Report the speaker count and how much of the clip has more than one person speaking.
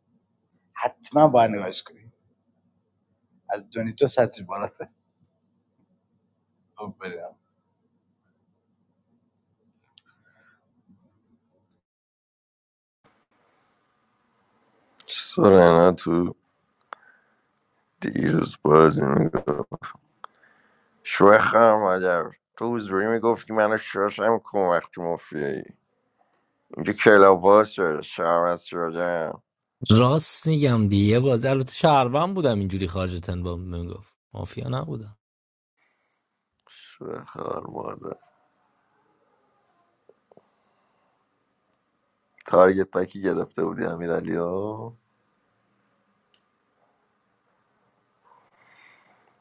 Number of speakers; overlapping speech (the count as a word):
three, no overlap